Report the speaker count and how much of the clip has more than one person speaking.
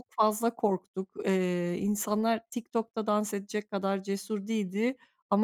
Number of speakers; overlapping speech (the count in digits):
1, no overlap